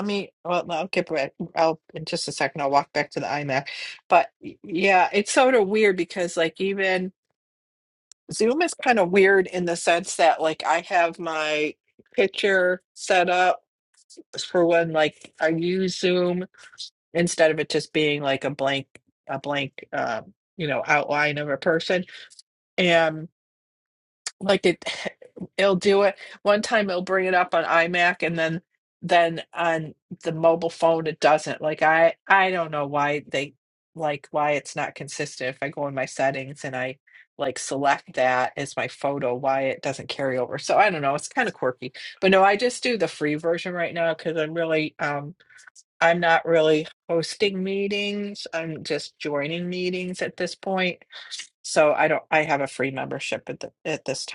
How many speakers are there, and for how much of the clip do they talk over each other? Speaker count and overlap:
one, no overlap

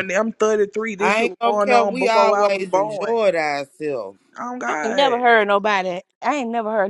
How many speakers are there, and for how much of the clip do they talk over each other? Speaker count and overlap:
three, about 39%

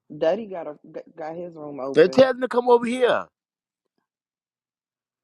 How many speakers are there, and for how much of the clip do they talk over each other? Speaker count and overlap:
two, about 6%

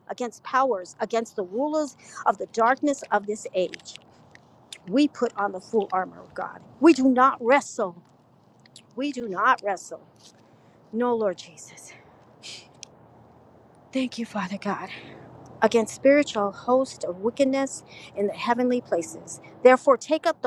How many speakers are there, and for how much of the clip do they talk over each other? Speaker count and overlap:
one, no overlap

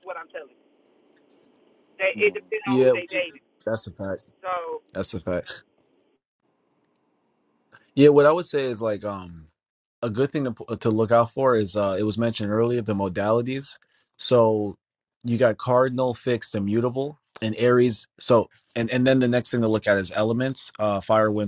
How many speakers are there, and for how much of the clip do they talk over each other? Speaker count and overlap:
two, about 1%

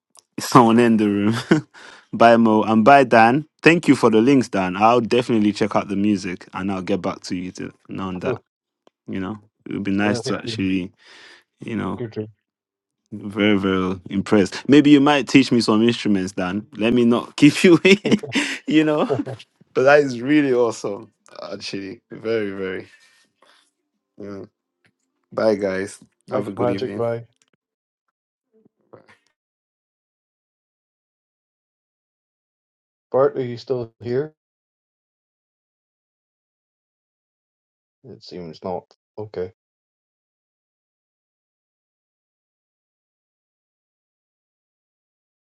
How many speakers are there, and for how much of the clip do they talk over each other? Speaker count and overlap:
two, about 3%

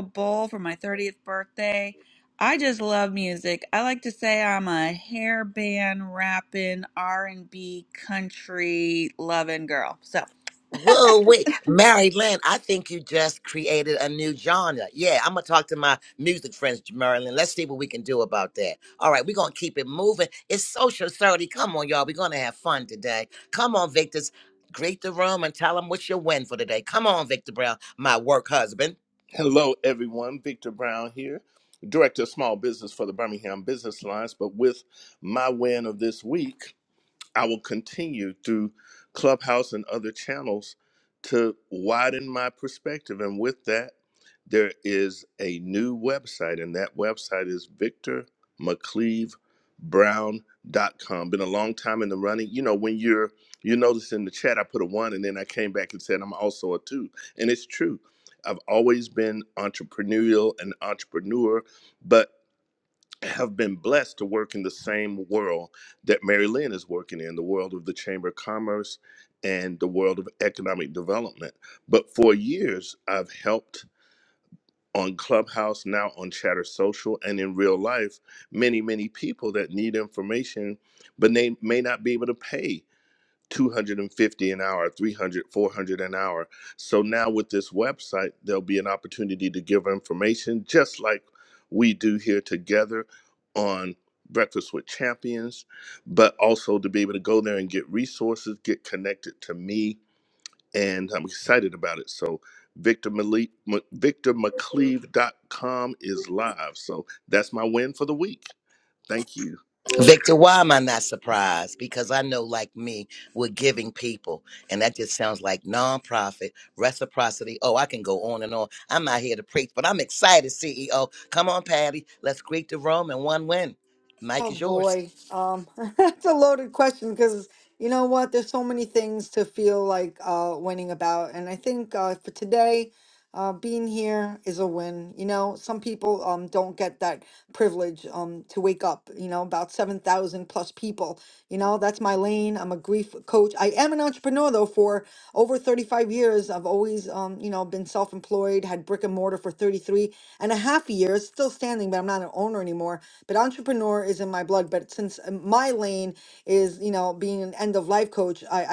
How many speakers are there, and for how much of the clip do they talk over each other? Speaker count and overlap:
four, under 1%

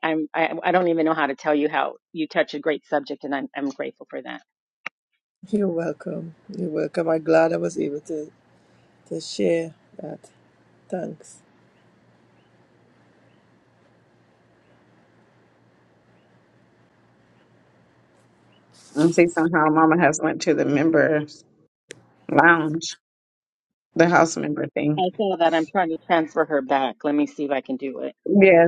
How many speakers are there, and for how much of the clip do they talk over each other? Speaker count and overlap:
three, under 1%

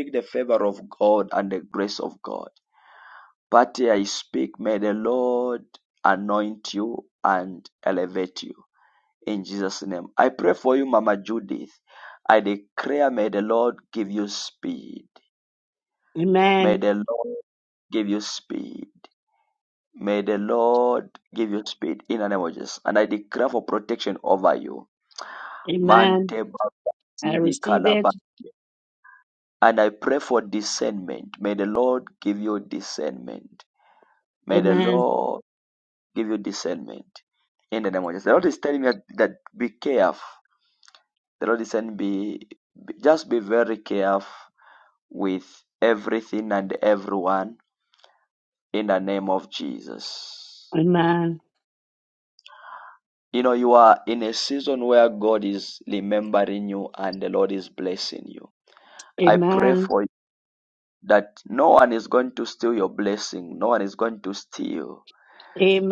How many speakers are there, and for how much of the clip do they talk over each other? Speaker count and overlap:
two, about 4%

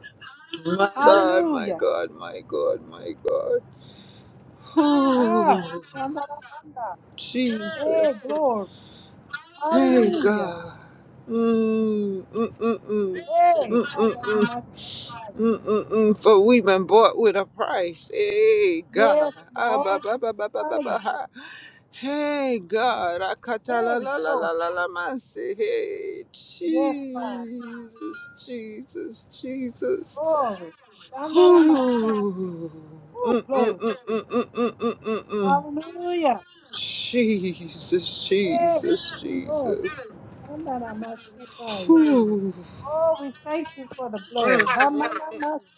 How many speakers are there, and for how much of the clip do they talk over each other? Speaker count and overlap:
two, about 20%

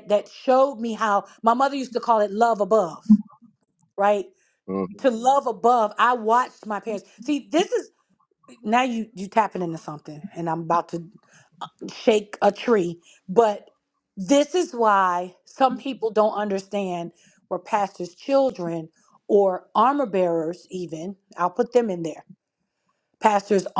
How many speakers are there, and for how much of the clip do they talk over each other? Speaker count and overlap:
one, no overlap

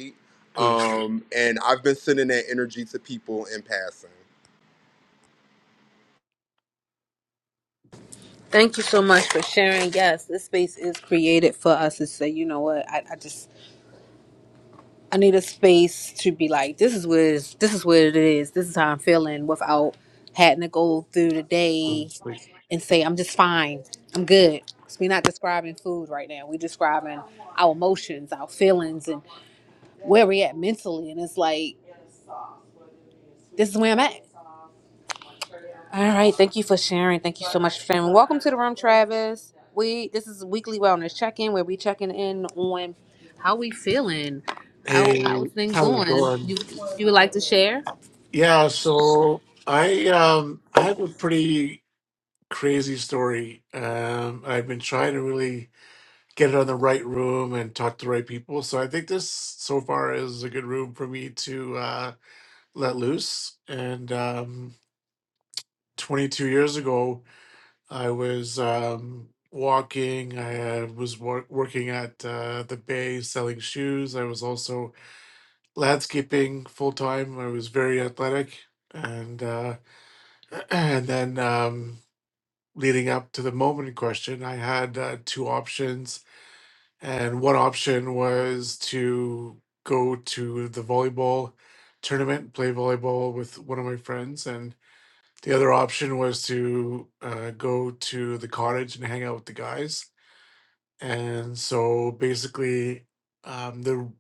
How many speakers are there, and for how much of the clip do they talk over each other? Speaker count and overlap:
three, about 2%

